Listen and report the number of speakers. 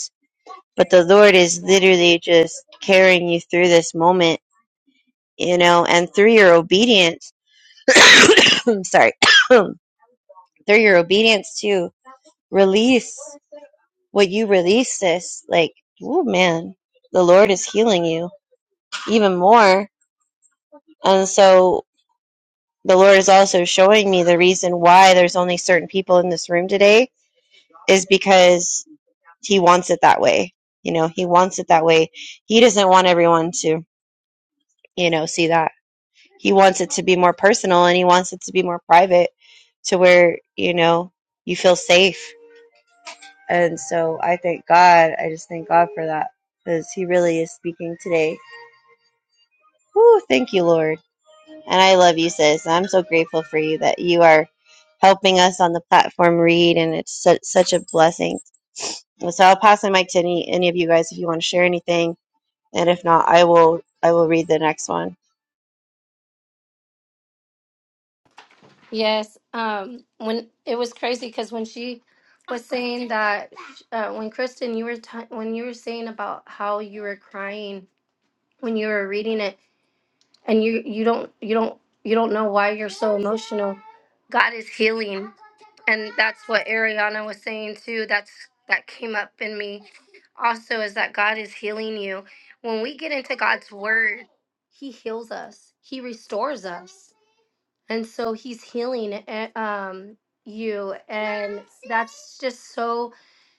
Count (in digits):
2